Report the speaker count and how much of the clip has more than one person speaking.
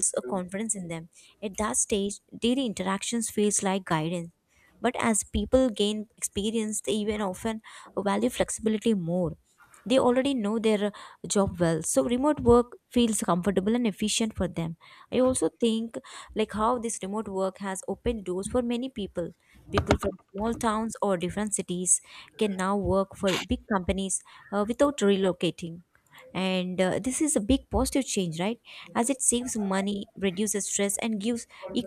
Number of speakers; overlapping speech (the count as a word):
one, no overlap